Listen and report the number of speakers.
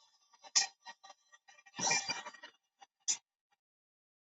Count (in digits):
0